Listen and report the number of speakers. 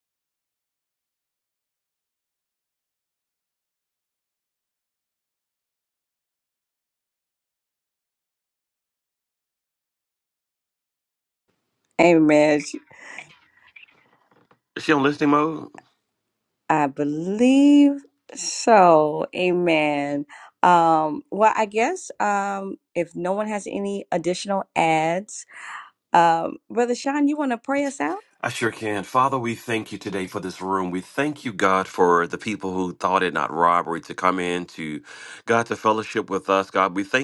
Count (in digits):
2